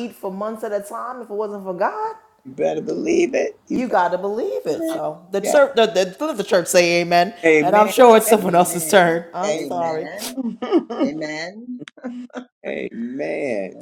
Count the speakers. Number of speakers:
3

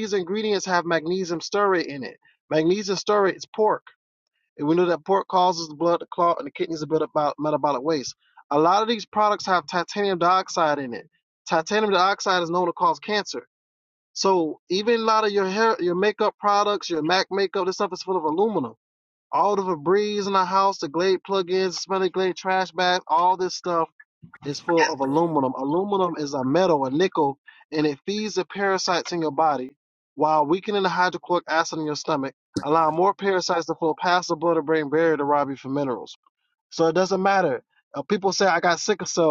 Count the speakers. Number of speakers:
1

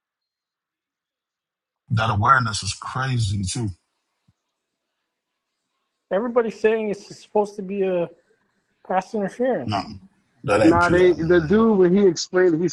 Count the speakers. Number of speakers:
3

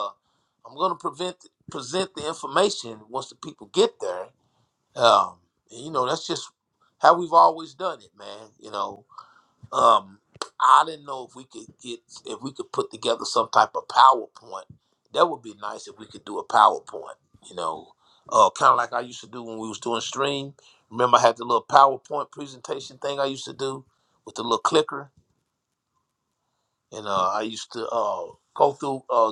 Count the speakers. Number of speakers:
1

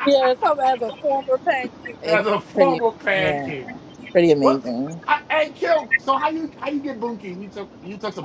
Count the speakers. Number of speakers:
3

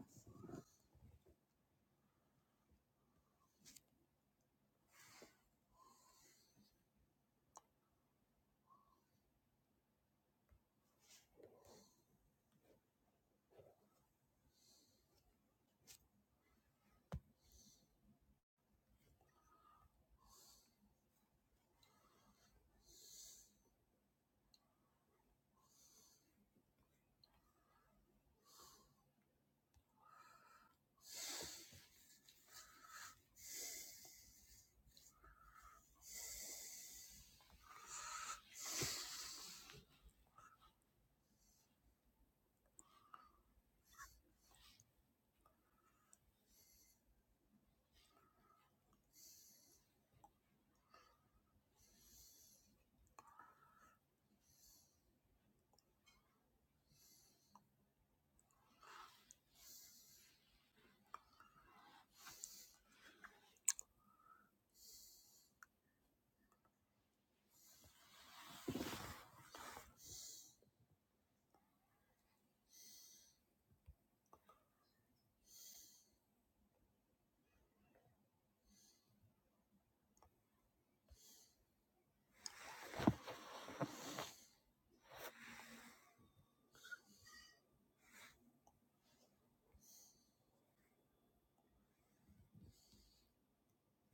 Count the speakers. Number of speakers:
0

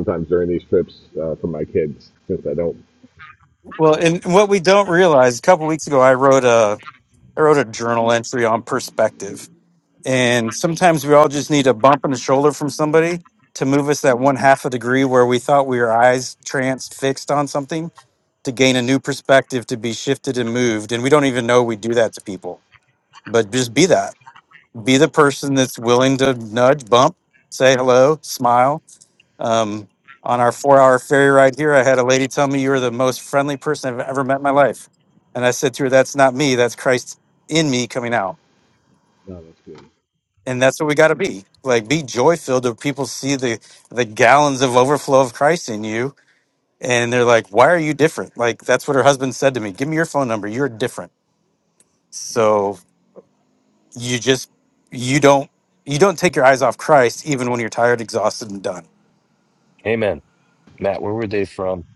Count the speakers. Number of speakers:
3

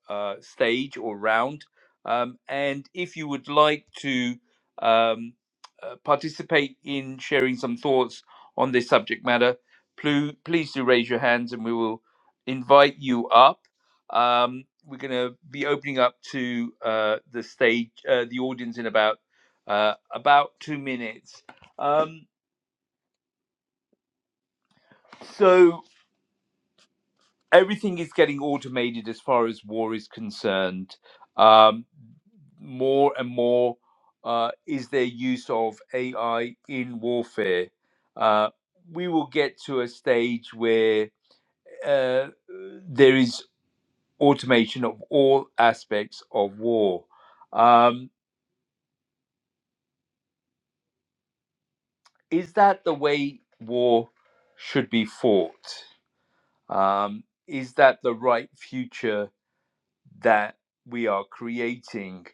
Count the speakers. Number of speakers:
1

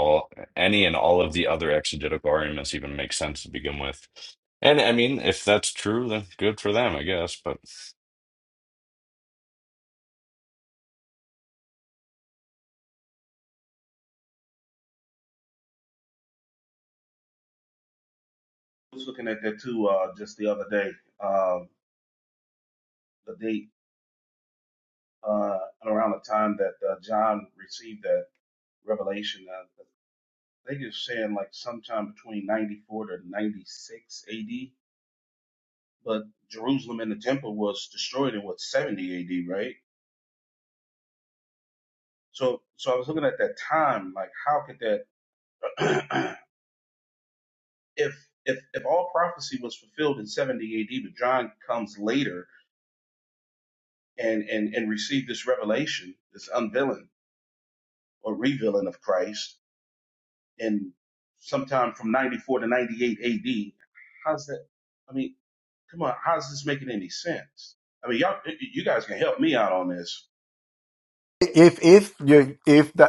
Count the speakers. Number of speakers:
3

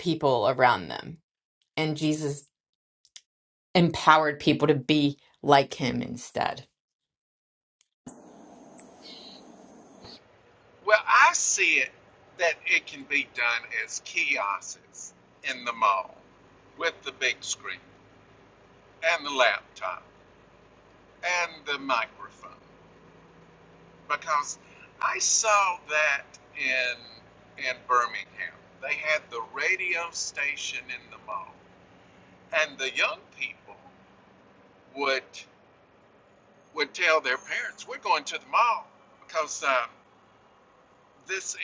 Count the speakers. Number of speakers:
2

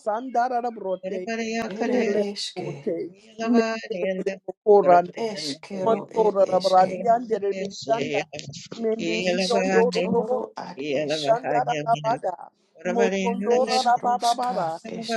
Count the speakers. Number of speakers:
3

